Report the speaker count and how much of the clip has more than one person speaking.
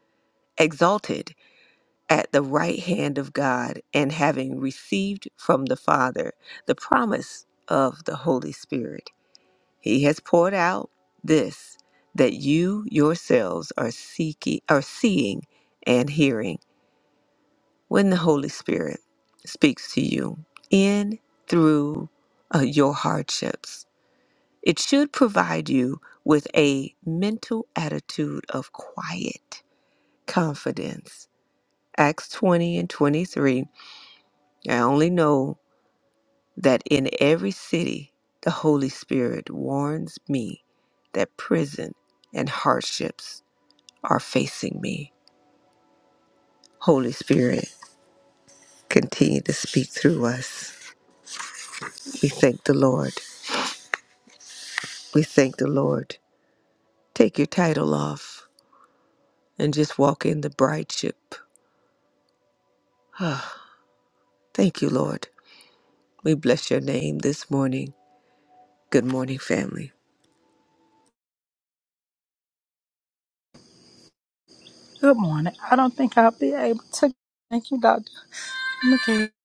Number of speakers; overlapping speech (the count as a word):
two, no overlap